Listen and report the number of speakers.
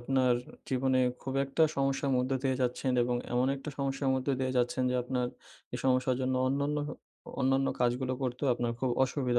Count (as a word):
one